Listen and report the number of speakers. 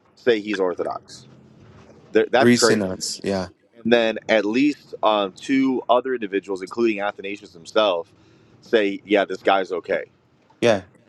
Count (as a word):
two